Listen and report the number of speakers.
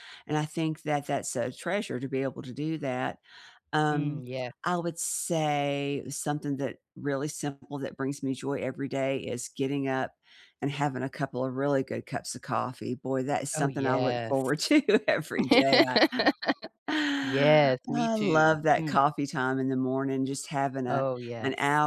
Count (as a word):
two